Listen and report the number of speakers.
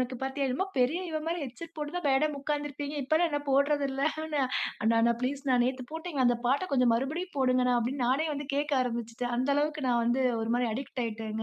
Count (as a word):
one